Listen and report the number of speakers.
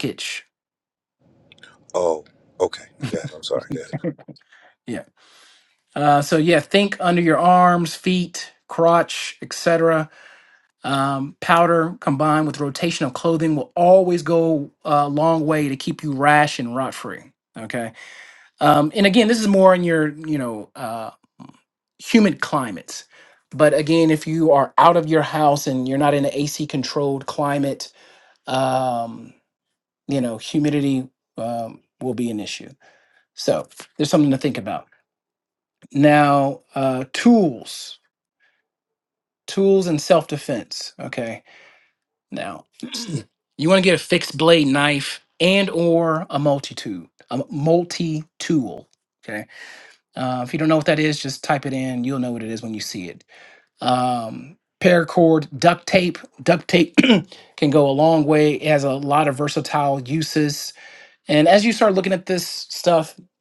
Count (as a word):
two